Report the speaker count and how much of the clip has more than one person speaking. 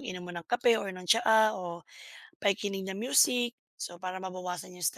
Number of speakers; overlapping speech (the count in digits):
1, no overlap